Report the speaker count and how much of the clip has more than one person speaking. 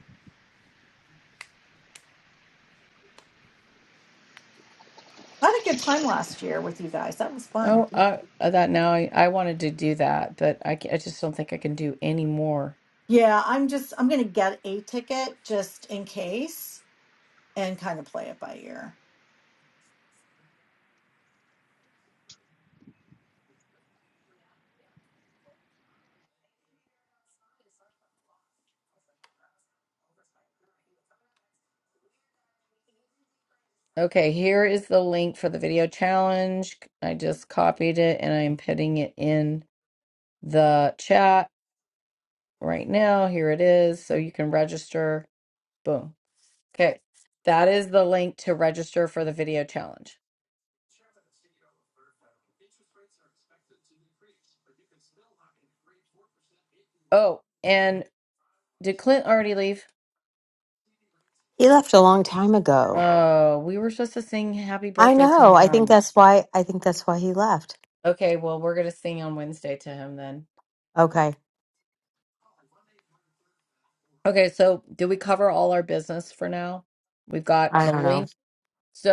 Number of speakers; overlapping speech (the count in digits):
3, about 2%